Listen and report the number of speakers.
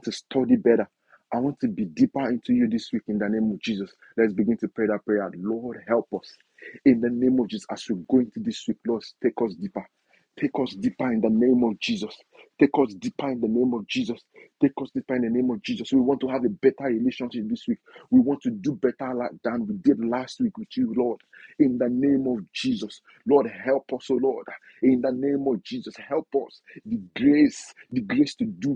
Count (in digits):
1